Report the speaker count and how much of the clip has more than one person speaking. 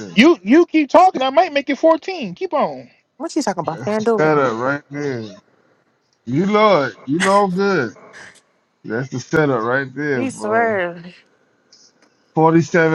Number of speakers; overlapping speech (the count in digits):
3, about 11%